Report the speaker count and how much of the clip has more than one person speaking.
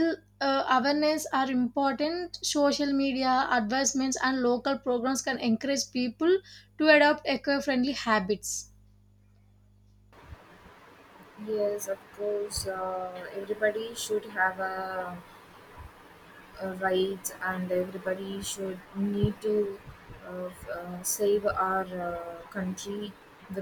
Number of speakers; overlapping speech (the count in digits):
2, no overlap